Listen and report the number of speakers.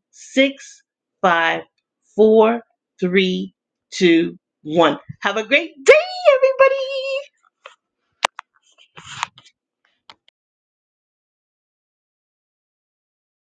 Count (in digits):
1